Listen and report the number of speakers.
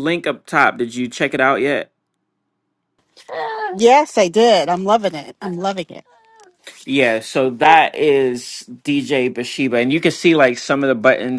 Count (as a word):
two